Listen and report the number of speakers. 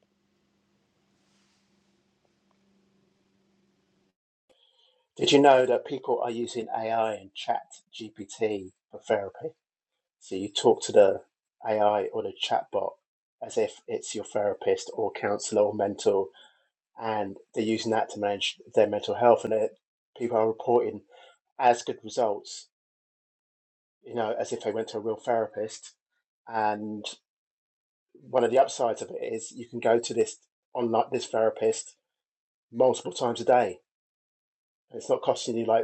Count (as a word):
one